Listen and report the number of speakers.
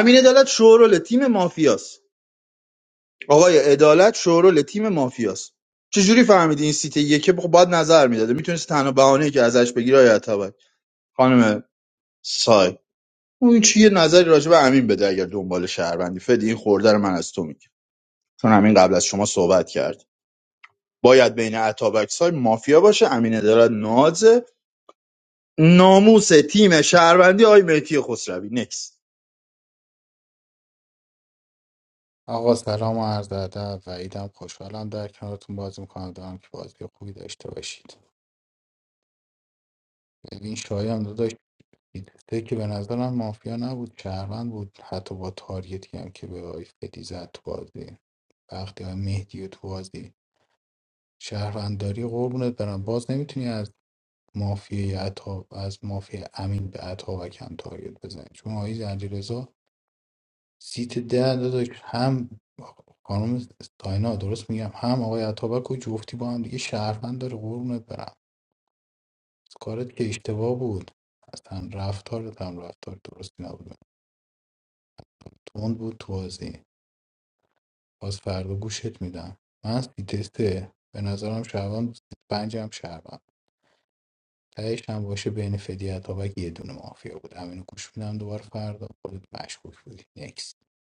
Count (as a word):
two